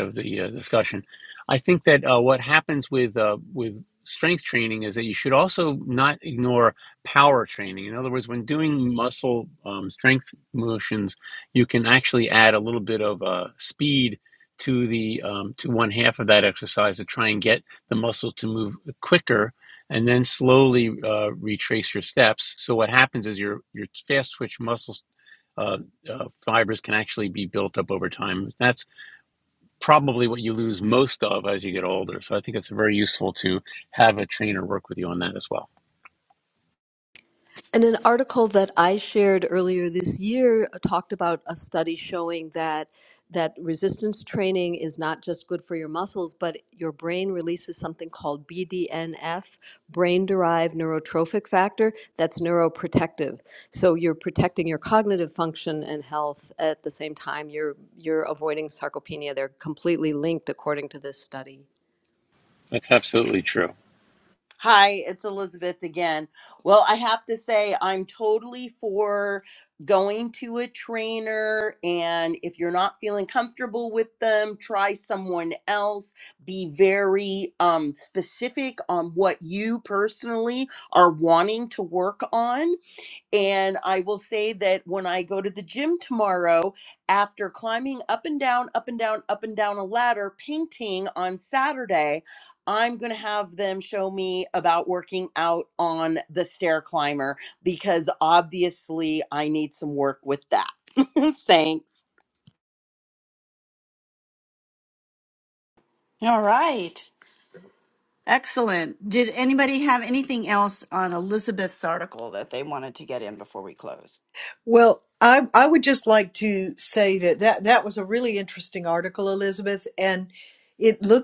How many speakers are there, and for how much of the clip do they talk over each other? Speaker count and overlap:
five, no overlap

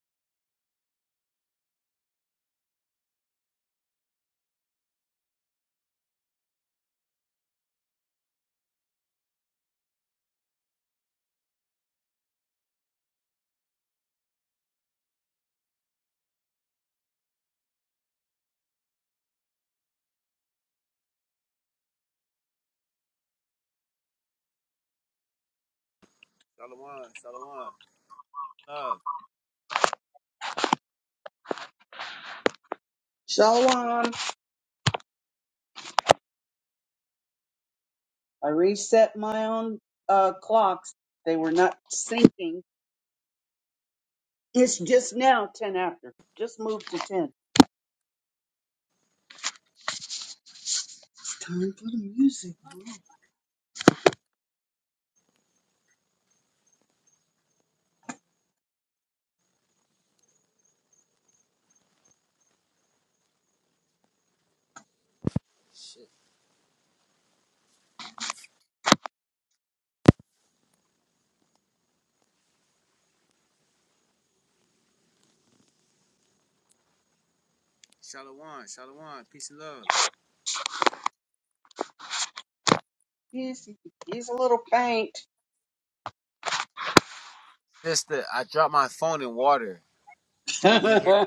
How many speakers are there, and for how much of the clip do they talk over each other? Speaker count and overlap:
two, no overlap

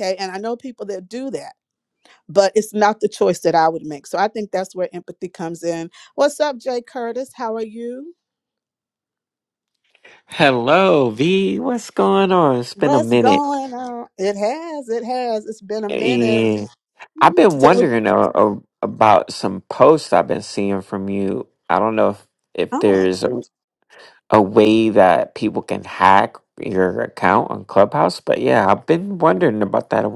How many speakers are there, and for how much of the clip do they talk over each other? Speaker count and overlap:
two, about 7%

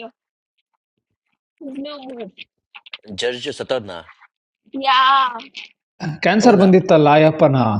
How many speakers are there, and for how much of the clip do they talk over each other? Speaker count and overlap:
three, about 4%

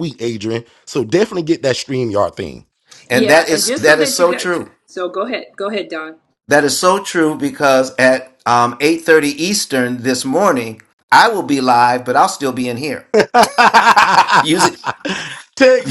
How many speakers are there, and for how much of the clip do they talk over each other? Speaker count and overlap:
three, about 10%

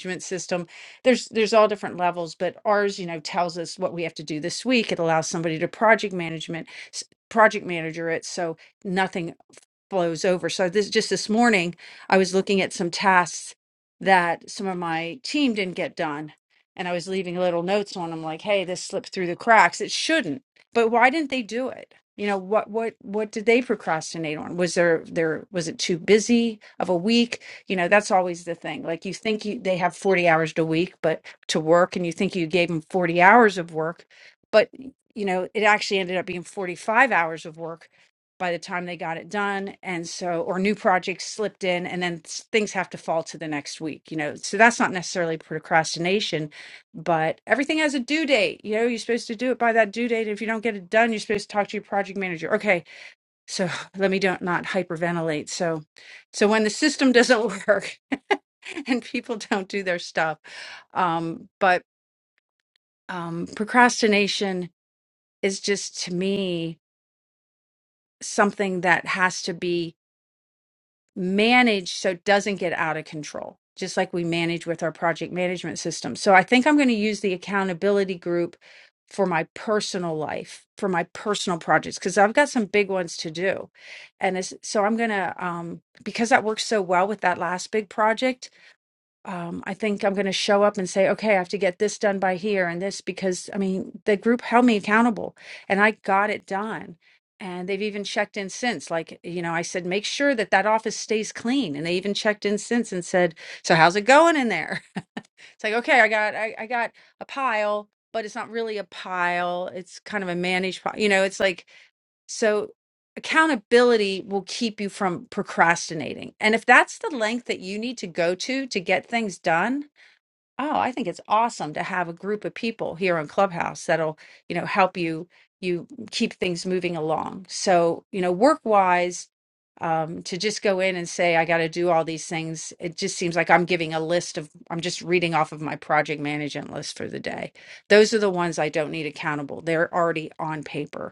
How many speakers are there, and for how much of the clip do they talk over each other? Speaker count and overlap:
one, no overlap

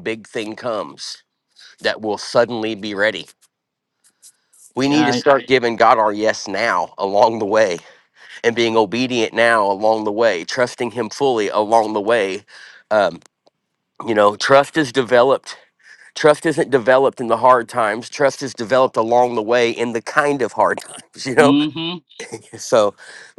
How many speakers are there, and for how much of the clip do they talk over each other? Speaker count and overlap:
two, about 2%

